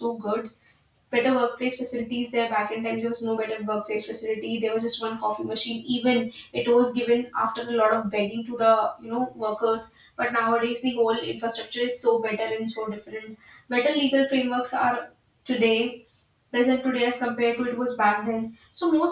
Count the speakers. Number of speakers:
1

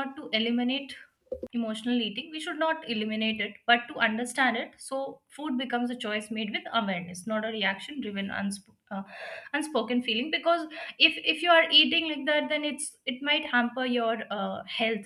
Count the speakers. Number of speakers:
1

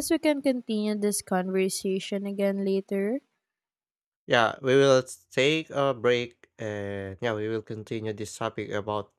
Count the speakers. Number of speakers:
2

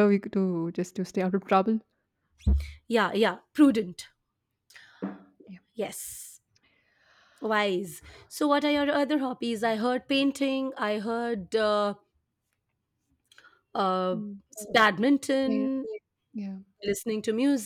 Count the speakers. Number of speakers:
2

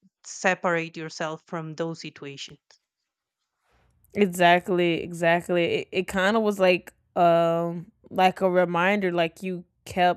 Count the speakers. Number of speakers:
2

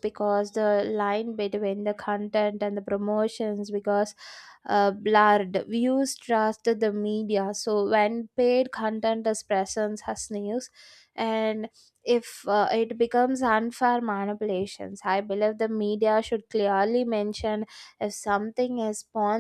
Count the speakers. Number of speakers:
1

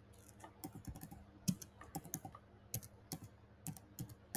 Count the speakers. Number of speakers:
0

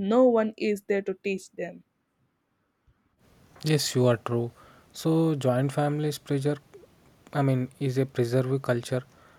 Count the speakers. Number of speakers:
2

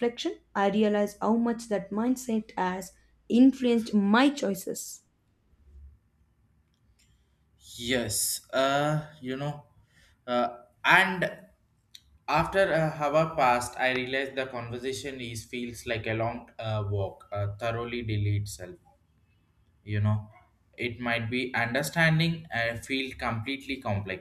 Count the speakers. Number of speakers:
2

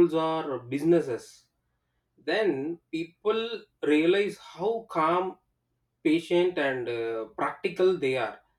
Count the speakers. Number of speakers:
1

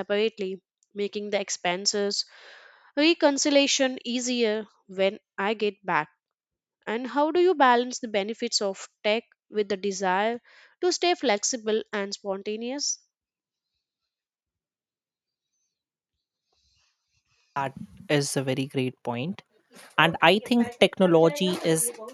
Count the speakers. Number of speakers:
2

